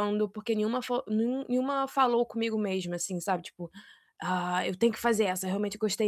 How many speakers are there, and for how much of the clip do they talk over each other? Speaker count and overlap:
1, no overlap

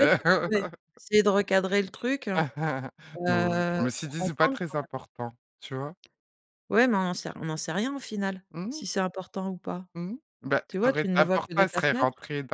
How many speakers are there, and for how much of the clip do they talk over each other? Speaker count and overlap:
2, about 27%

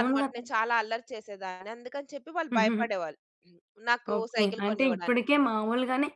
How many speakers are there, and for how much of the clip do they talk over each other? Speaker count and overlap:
2, about 25%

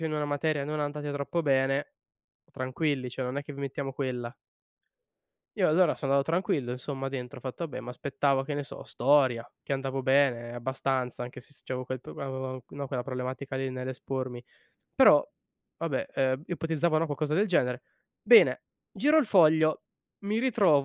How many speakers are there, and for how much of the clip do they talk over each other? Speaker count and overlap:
1, no overlap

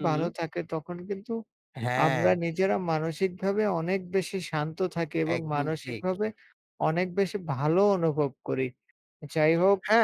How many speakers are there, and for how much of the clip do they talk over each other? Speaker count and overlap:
2, about 13%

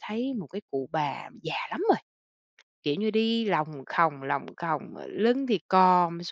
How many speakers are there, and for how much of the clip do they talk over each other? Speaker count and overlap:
1, no overlap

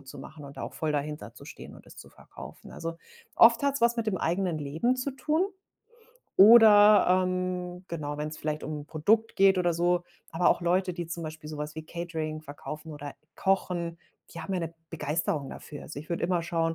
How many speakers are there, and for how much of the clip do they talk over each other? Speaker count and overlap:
1, no overlap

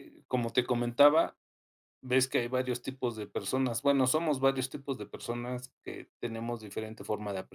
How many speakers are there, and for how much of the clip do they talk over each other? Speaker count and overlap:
1, no overlap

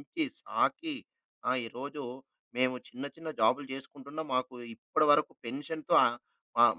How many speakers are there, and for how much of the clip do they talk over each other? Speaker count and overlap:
1, no overlap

